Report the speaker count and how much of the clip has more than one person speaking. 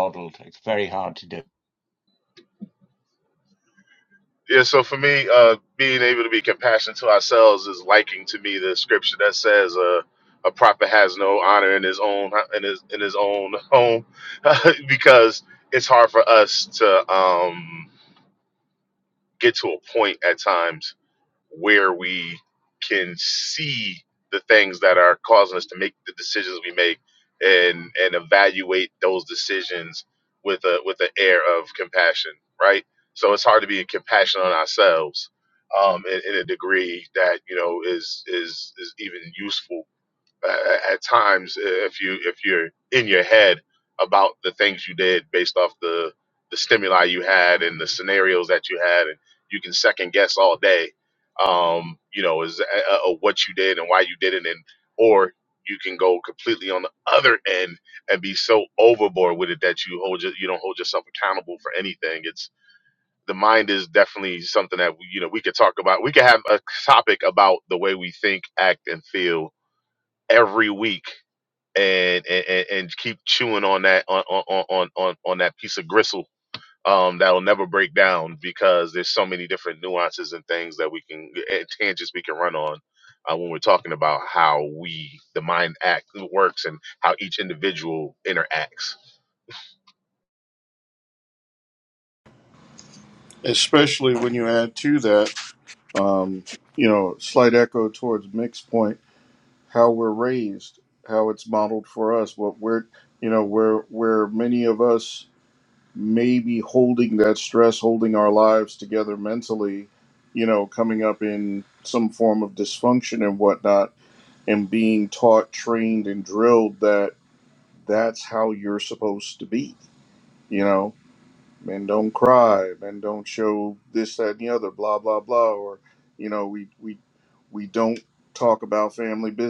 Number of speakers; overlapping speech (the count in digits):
3, no overlap